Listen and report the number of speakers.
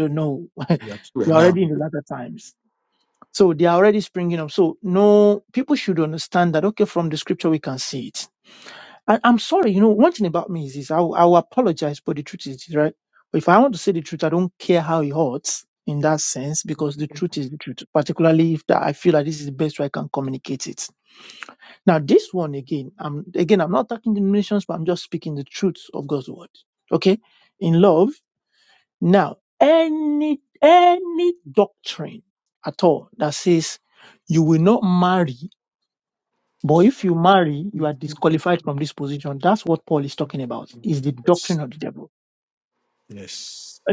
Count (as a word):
two